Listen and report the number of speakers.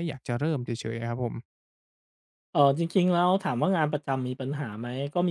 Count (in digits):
2